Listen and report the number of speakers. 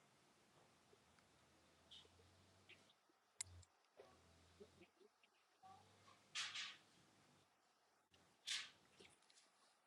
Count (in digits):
0